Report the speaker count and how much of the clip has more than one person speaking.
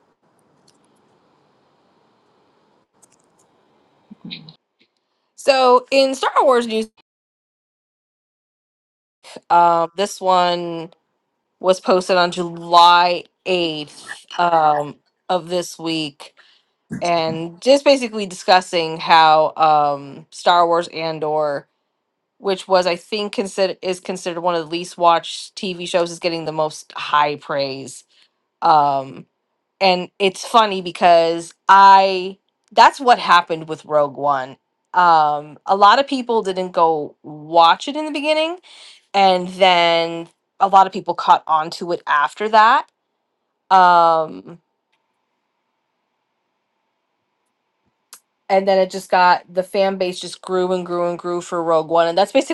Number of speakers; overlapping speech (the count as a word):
one, no overlap